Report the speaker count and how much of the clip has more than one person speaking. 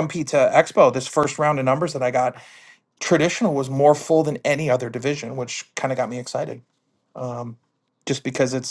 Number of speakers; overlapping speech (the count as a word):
one, no overlap